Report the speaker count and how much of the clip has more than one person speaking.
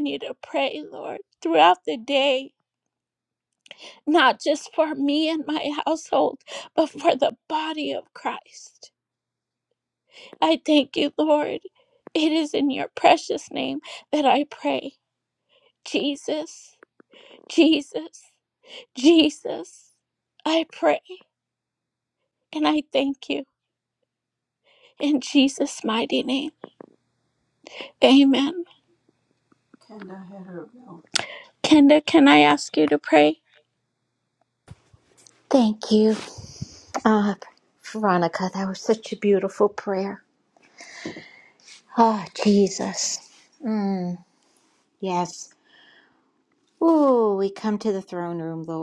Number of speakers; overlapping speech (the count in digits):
2, no overlap